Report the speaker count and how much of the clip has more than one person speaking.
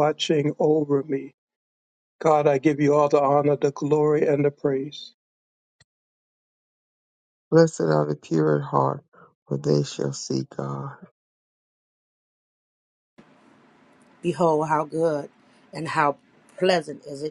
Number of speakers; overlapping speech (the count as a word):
three, no overlap